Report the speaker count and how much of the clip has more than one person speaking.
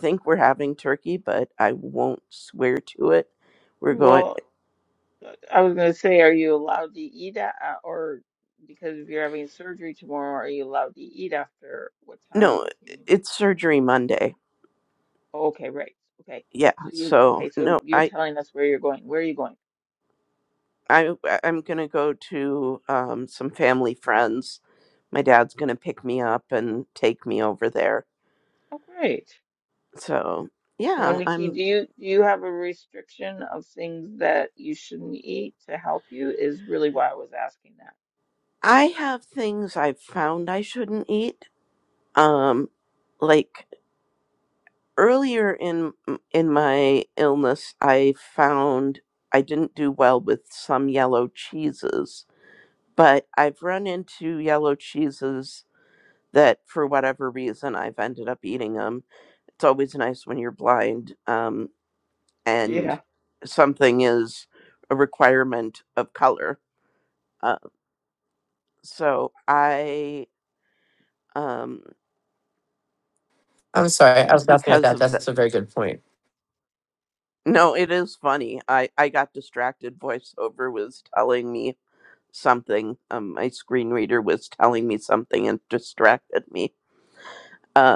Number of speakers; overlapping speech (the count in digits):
3, about 4%